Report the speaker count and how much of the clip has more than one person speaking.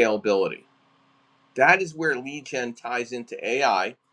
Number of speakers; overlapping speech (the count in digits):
1, no overlap